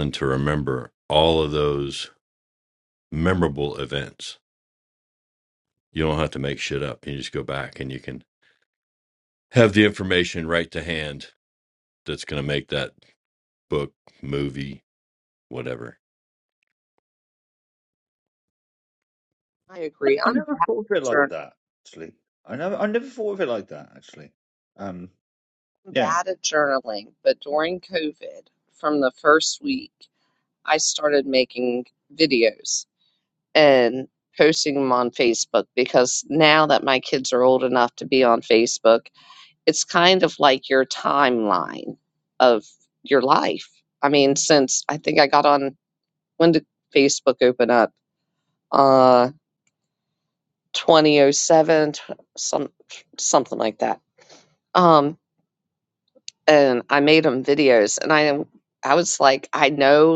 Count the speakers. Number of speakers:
three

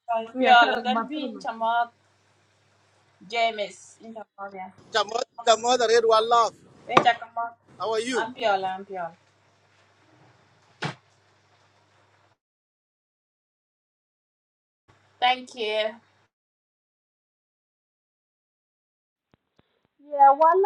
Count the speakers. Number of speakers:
three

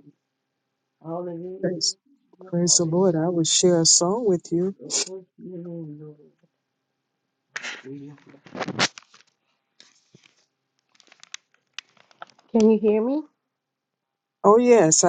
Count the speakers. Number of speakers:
two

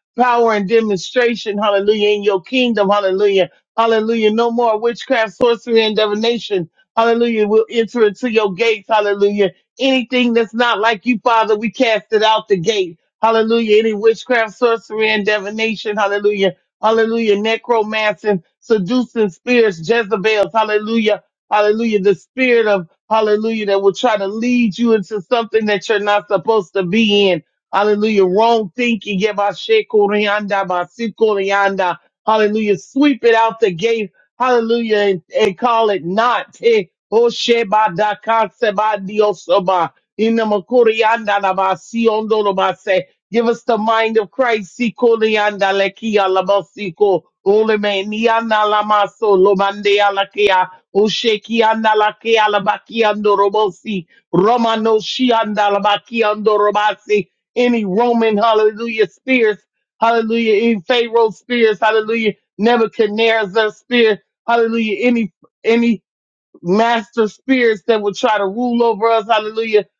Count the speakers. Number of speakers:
one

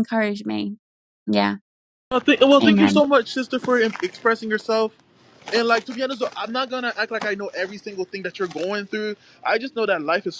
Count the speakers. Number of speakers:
two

